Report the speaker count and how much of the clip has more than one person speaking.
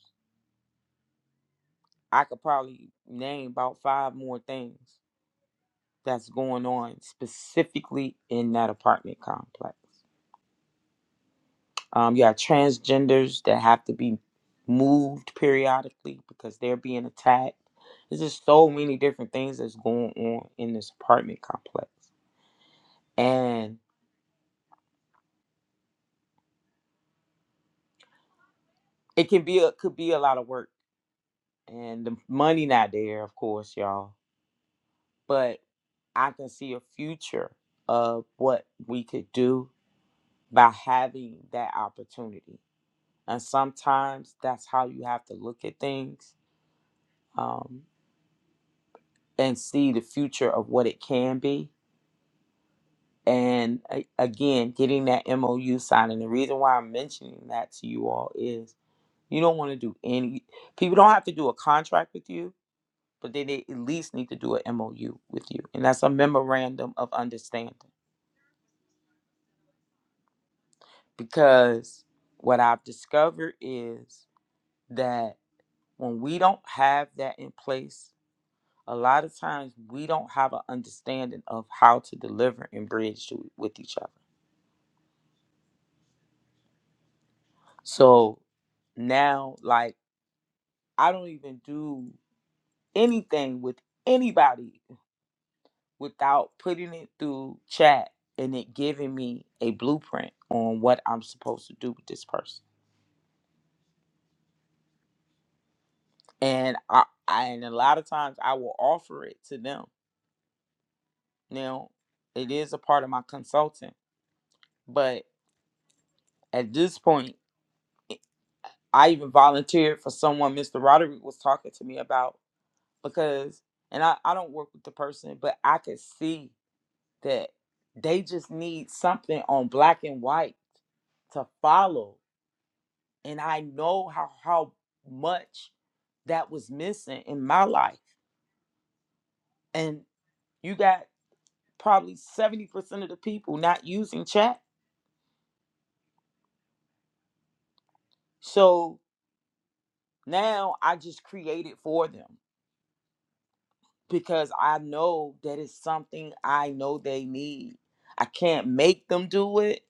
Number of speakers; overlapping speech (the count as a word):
one, no overlap